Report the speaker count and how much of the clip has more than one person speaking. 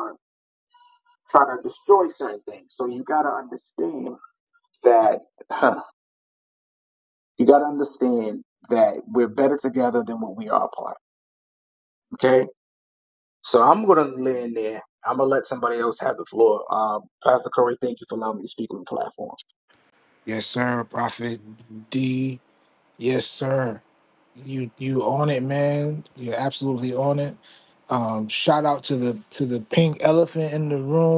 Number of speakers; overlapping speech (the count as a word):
two, no overlap